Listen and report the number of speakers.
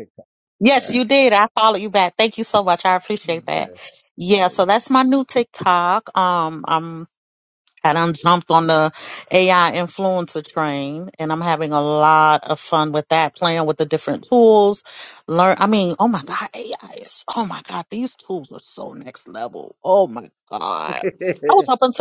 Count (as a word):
two